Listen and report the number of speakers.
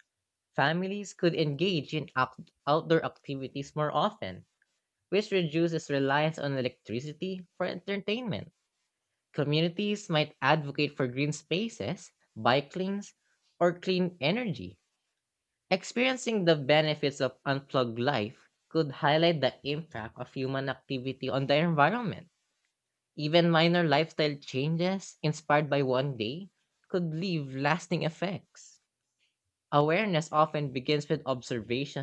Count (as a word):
one